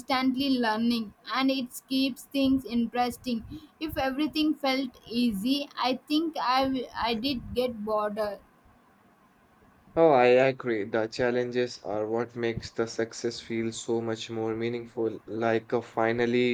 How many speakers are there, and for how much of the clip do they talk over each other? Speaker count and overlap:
2, no overlap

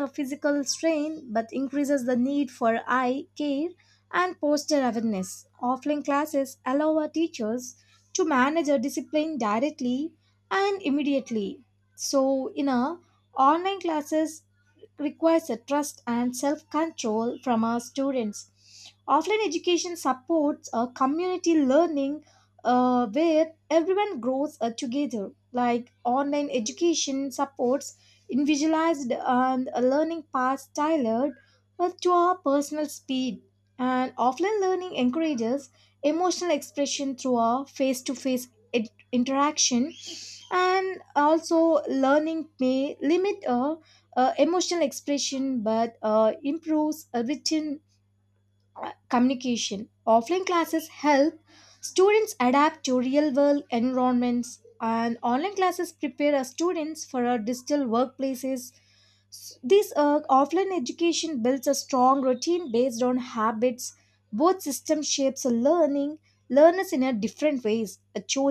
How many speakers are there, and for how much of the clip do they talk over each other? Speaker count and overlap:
1, no overlap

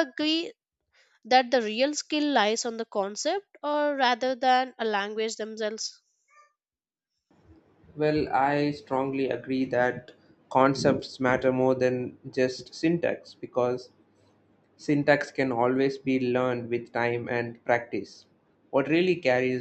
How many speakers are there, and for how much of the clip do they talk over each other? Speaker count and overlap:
2, no overlap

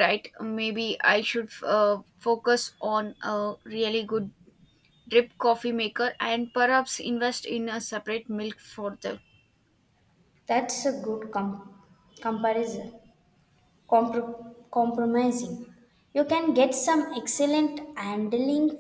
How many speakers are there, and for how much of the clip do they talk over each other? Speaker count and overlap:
2, no overlap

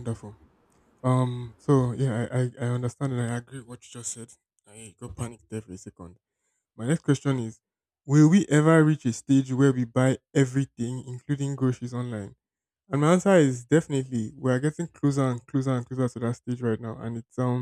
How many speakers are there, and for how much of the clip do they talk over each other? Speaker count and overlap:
1, no overlap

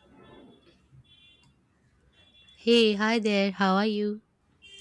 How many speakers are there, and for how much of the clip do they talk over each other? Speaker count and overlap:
1, no overlap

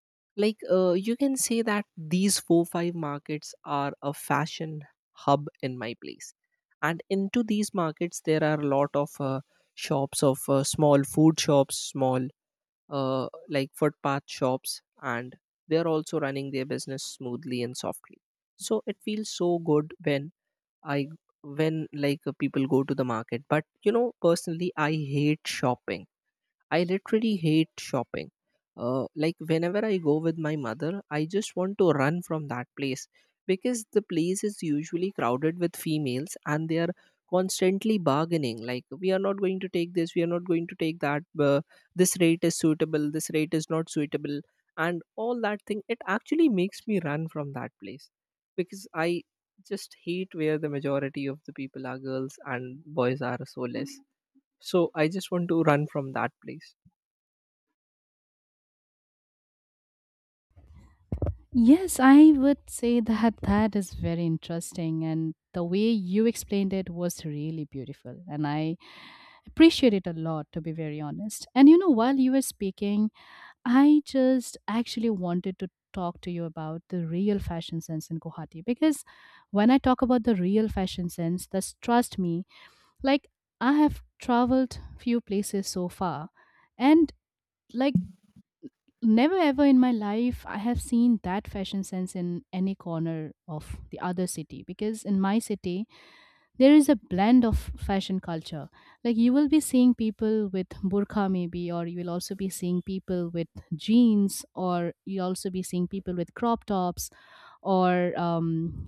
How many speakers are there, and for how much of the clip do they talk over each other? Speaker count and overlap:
2, no overlap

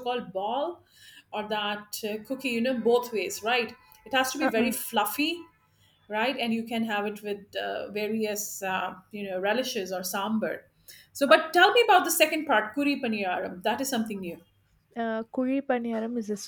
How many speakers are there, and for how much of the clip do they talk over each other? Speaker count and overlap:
2, about 3%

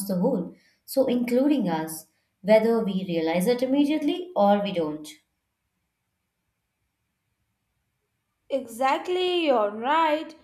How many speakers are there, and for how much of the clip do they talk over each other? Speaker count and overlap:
2, no overlap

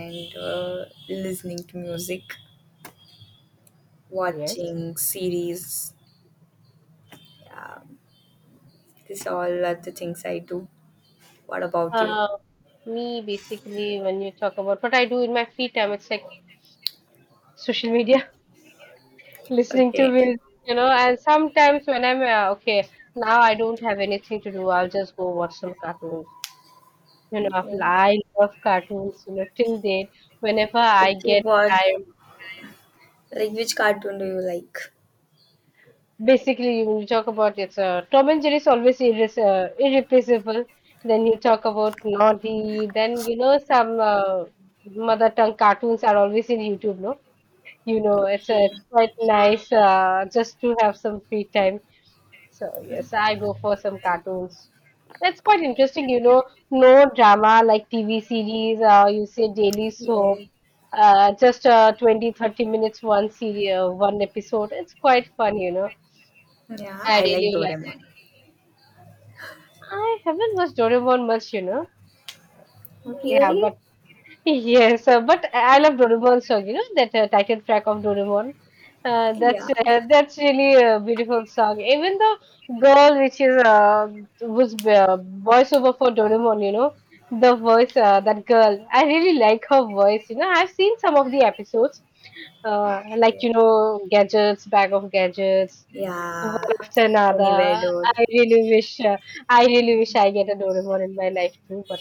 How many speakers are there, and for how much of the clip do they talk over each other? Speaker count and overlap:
2, about 6%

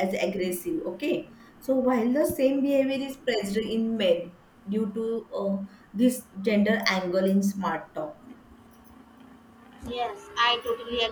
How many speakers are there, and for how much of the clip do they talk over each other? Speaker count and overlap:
2, no overlap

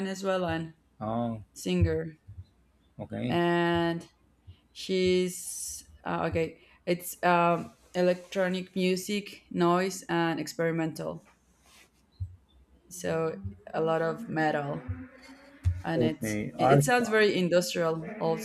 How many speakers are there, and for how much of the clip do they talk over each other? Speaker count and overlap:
2, about 7%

